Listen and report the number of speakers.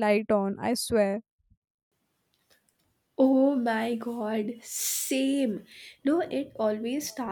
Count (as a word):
two